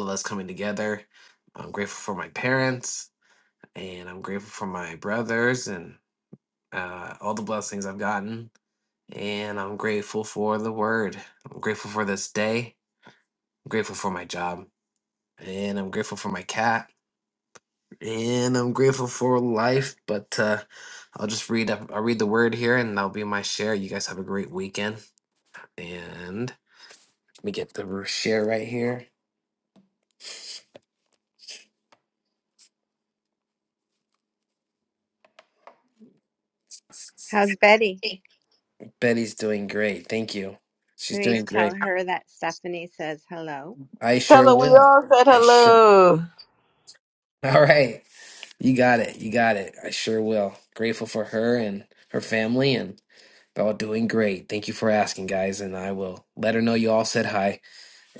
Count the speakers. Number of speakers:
three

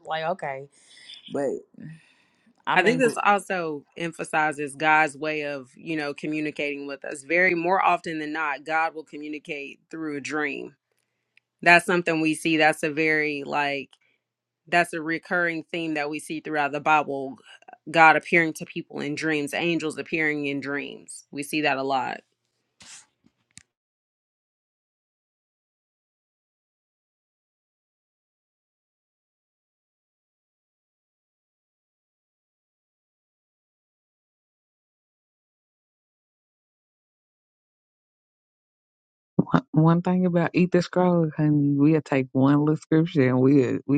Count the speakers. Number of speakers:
three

